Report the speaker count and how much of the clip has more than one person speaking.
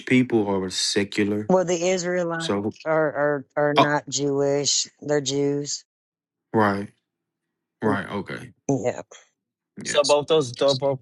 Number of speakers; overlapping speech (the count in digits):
3, about 5%